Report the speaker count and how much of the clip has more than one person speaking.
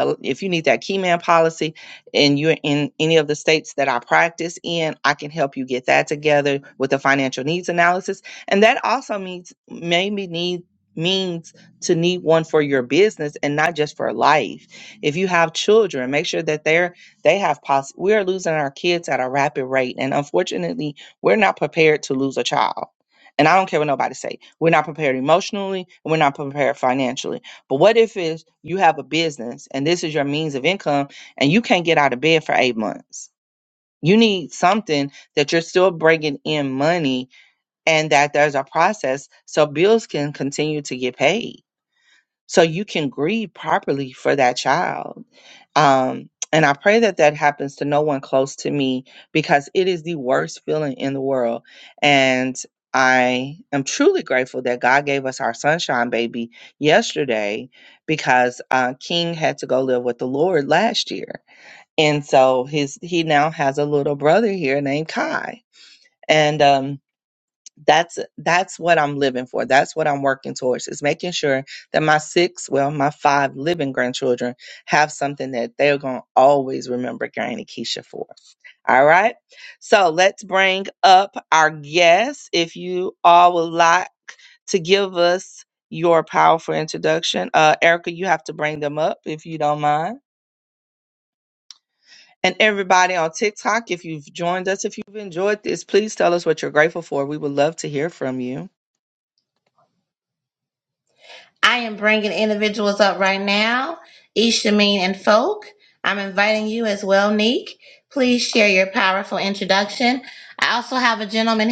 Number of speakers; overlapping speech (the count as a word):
two, no overlap